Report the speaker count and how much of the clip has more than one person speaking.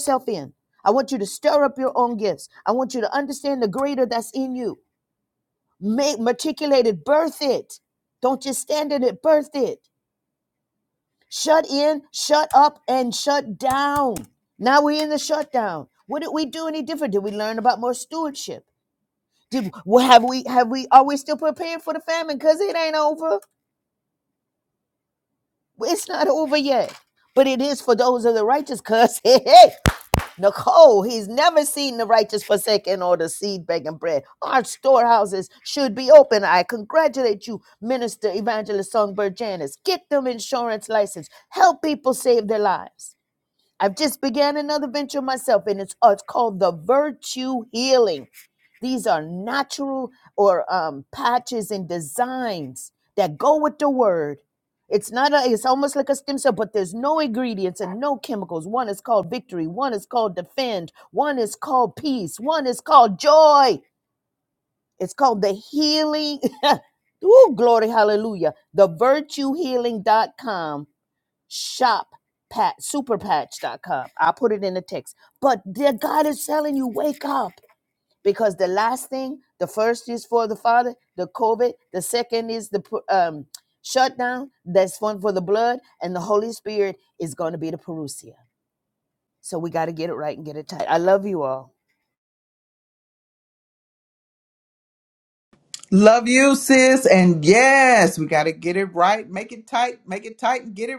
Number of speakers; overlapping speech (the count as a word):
two, no overlap